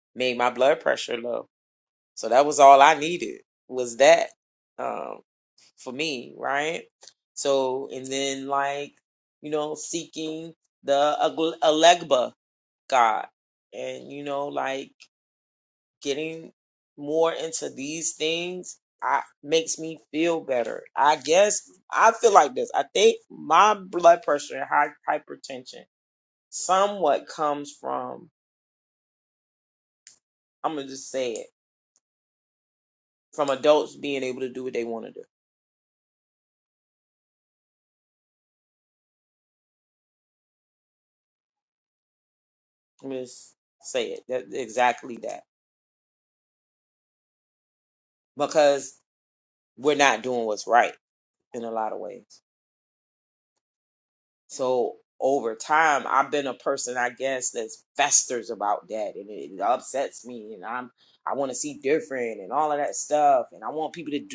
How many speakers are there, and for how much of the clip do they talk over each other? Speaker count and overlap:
one, no overlap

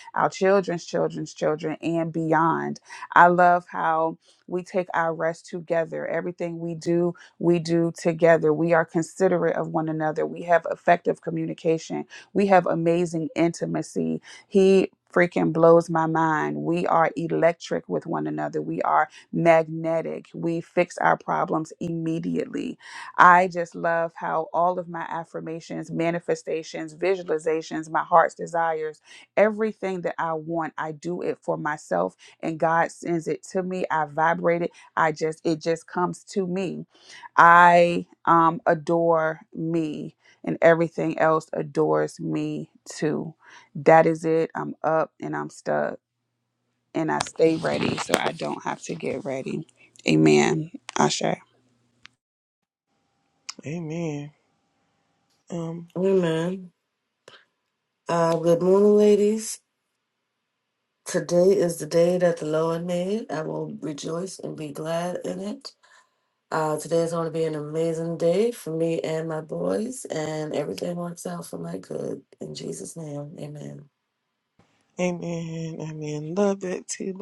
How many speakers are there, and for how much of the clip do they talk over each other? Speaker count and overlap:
three, no overlap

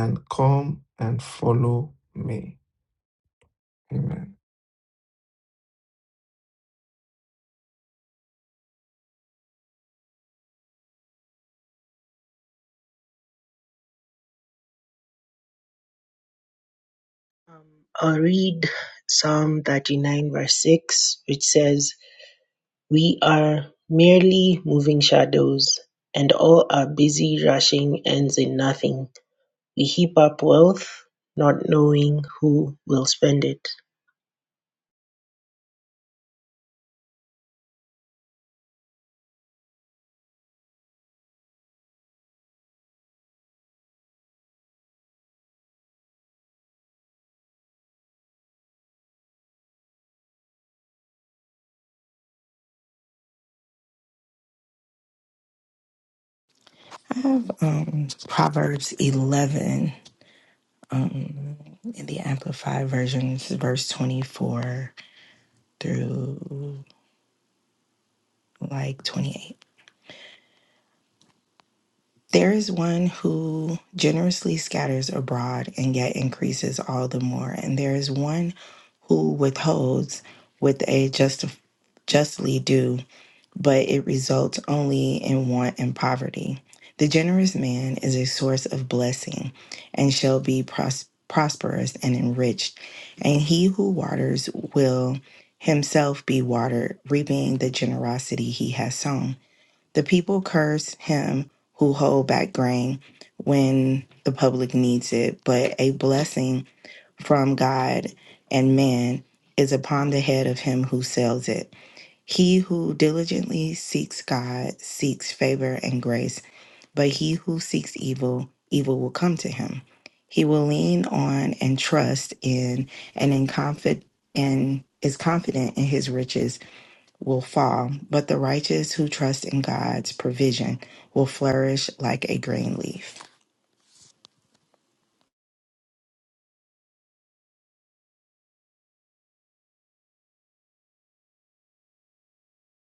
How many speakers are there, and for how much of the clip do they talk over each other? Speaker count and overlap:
three, no overlap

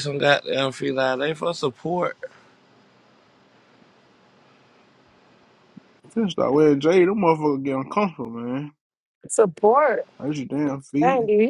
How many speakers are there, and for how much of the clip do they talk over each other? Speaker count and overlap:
three, about 2%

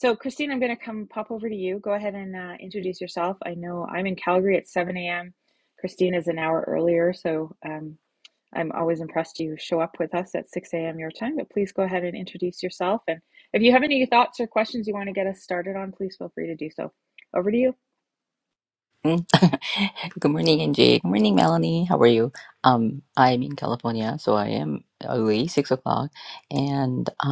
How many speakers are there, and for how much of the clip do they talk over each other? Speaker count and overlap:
two, no overlap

